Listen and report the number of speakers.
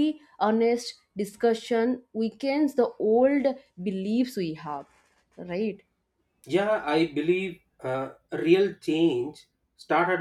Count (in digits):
2